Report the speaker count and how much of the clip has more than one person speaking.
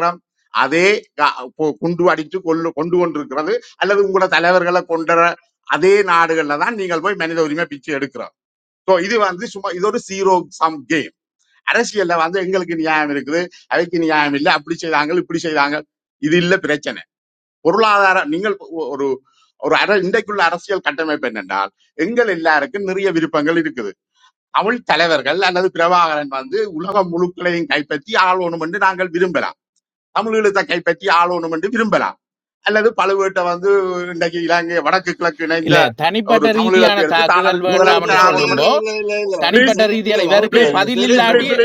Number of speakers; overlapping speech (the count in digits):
3, about 12%